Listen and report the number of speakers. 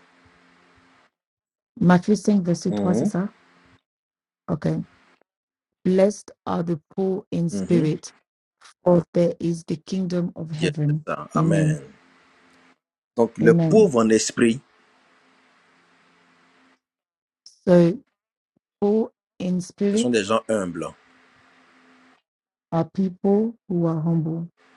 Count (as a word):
two